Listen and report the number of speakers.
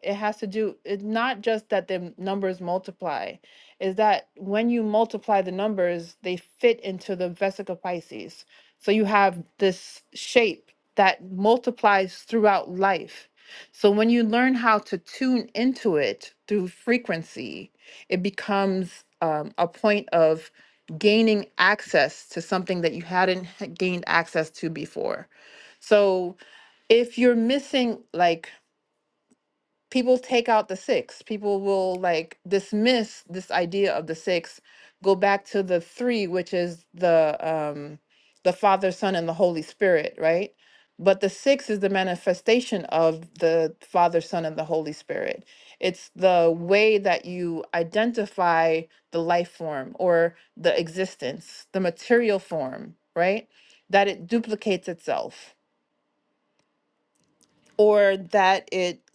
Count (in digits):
1